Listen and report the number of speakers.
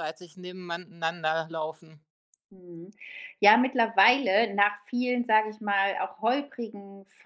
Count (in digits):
2